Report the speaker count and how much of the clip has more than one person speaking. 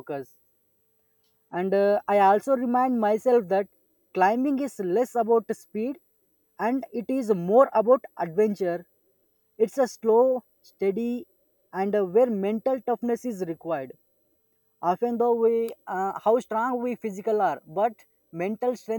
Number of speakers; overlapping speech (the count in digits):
1, no overlap